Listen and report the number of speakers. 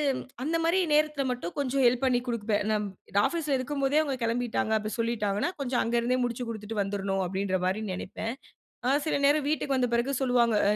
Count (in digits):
1